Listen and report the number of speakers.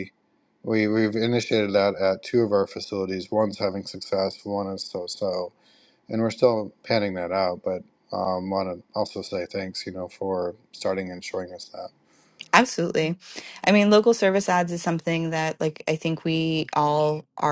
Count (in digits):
2